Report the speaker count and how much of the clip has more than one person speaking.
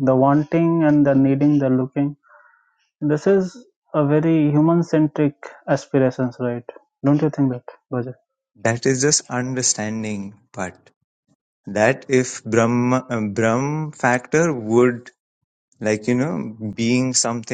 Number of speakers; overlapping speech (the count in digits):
2, no overlap